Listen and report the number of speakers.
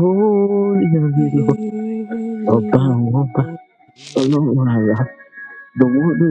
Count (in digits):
2